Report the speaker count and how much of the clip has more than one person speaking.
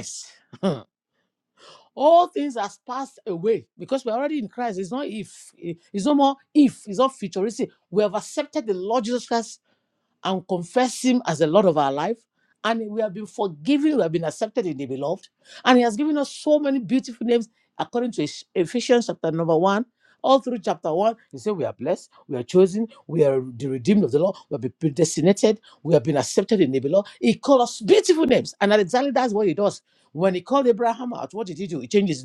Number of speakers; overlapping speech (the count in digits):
1, no overlap